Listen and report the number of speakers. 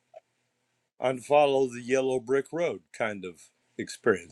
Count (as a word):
one